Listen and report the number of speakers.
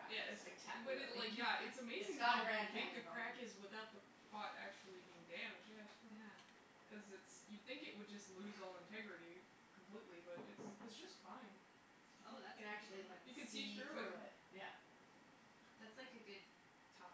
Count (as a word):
three